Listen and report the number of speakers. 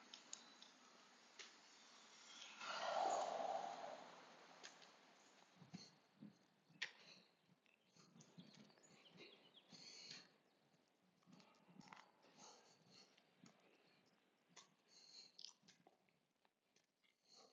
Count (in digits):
0